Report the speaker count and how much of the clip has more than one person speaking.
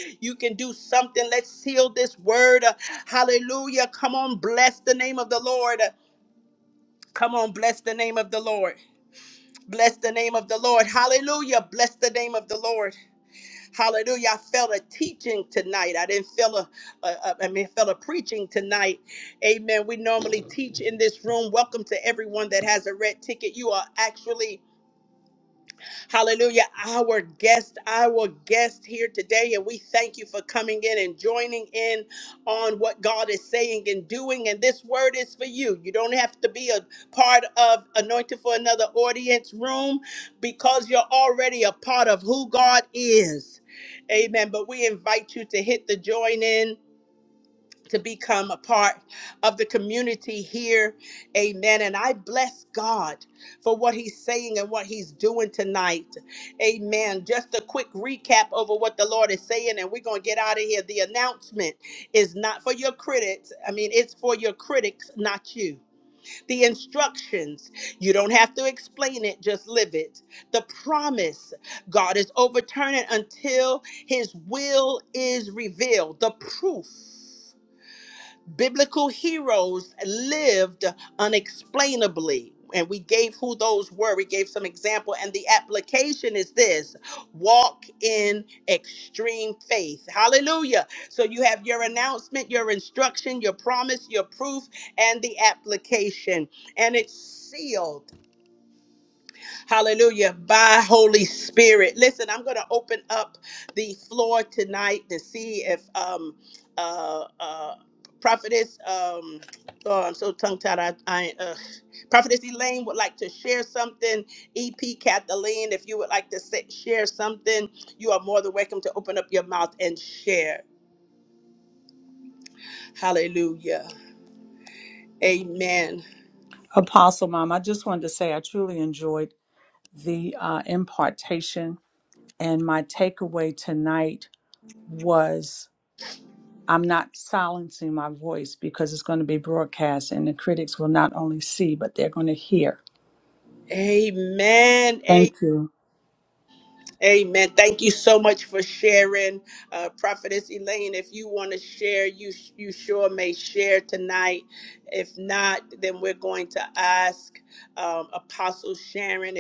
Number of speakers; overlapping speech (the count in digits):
2, no overlap